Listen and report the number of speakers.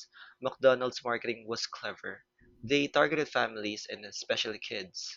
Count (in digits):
1